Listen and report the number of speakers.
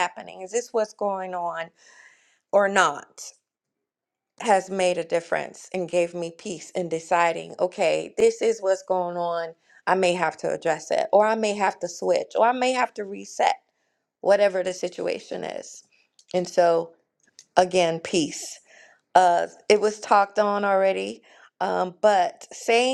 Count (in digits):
1